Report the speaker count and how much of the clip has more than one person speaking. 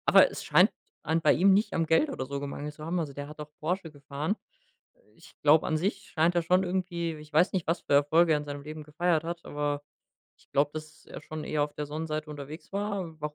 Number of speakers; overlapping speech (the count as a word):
one, no overlap